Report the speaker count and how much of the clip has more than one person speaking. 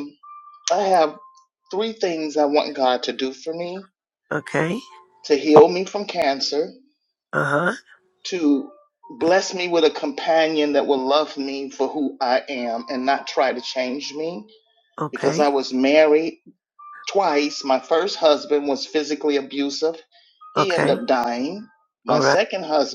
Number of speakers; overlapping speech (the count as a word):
two, about 5%